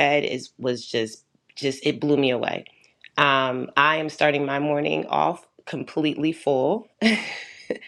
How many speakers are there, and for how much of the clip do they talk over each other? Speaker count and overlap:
one, no overlap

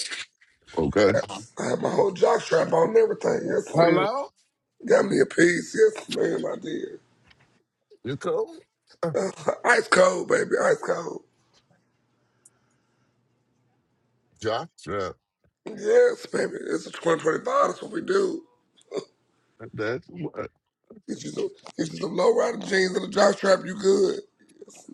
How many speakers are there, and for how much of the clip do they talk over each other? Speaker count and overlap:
two, about 1%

